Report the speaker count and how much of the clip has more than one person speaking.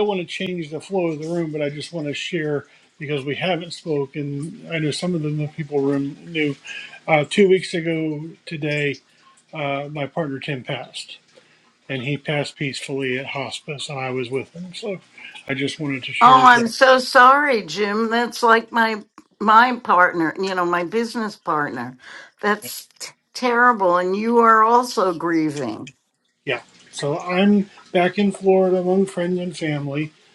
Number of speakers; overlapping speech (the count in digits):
2, about 2%